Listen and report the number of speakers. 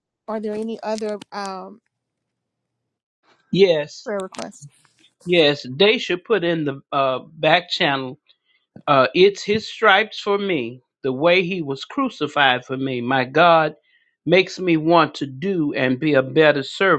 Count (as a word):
two